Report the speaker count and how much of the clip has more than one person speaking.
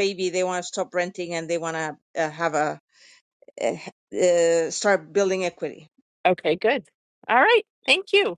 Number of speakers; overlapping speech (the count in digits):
2, no overlap